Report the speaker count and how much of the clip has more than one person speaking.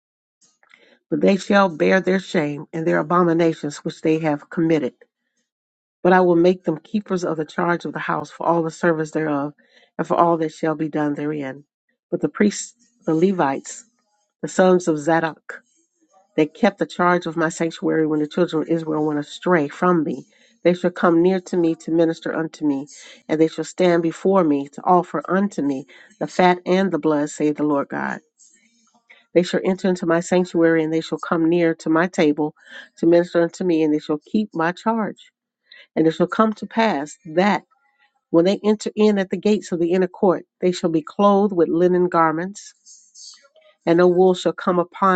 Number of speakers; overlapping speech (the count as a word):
one, no overlap